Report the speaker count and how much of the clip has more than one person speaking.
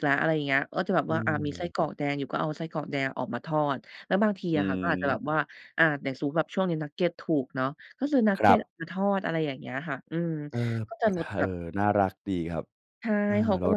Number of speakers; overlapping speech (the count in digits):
2, about 17%